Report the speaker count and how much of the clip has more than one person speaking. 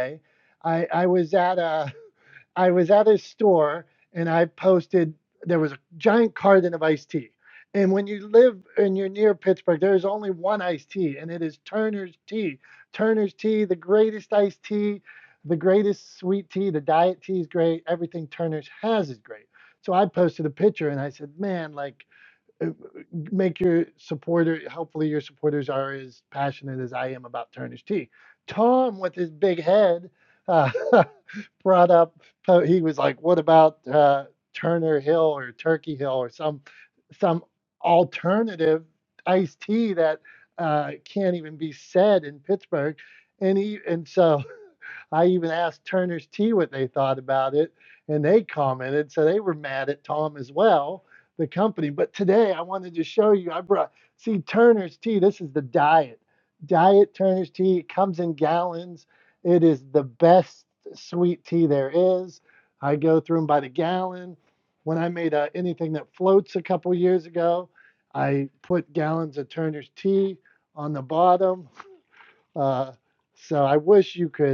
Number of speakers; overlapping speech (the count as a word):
one, no overlap